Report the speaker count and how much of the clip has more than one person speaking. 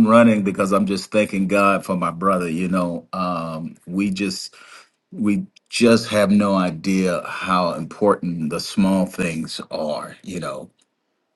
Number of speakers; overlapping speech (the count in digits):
1, no overlap